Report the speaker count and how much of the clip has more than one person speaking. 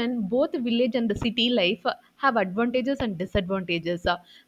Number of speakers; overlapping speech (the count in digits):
1, no overlap